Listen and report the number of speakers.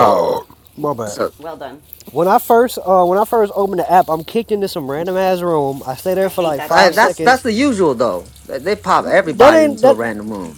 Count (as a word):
three